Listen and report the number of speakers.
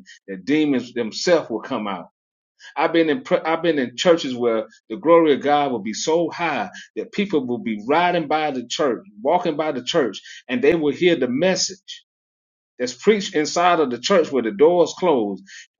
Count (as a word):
one